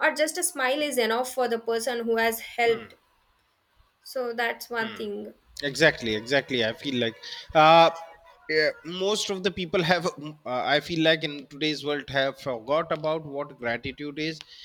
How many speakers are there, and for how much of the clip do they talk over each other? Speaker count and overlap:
two, no overlap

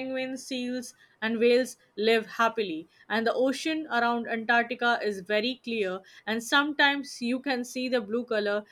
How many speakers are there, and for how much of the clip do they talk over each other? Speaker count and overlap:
one, no overlap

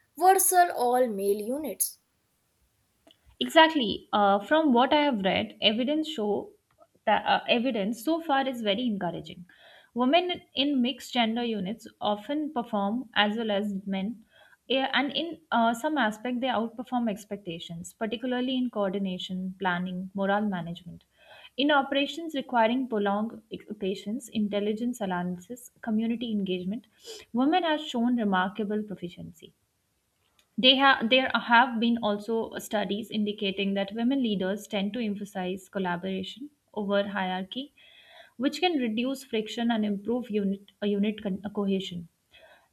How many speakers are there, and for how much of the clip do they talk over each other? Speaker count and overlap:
two, no overlap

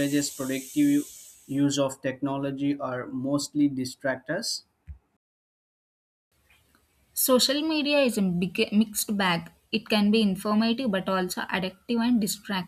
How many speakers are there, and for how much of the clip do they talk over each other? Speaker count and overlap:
two, no overlap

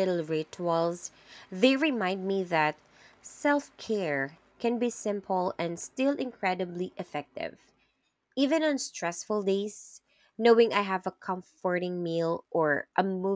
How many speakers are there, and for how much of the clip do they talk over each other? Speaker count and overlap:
one, no overlap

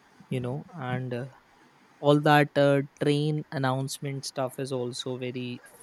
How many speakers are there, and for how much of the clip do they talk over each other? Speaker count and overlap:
one, no overlap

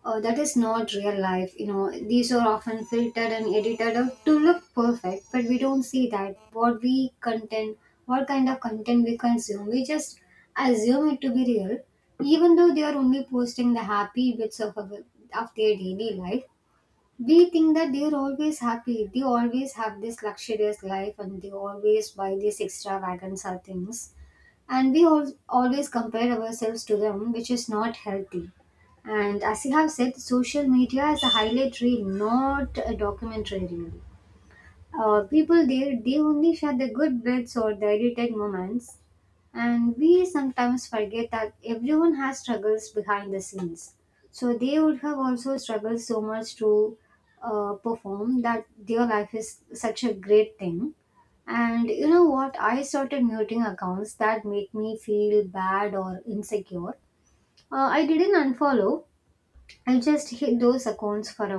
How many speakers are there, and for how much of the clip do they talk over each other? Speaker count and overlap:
one, no overlap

